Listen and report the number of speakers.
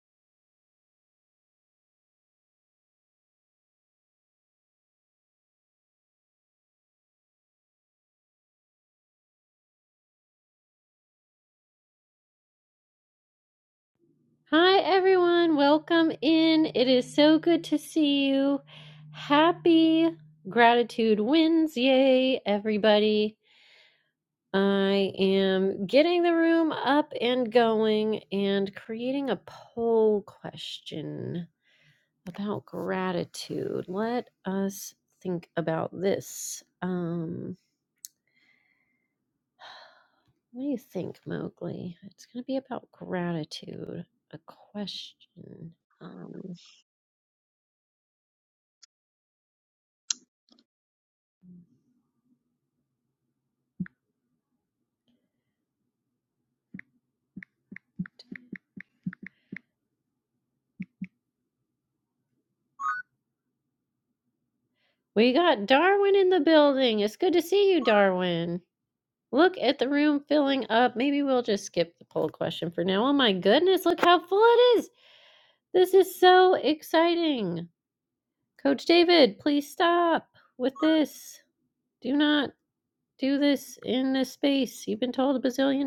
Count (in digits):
1